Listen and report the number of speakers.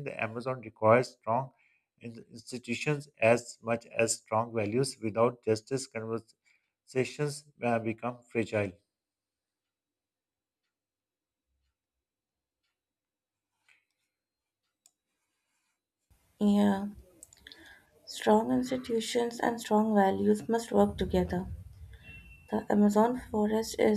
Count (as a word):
two